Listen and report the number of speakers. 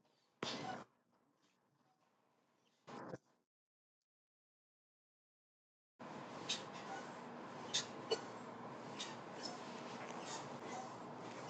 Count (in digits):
0